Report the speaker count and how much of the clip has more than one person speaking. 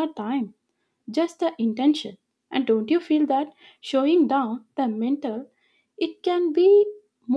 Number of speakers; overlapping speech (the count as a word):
one, no overlap